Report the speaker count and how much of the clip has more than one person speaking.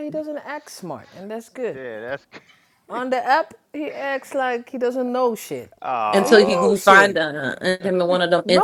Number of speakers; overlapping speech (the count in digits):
3, about 14%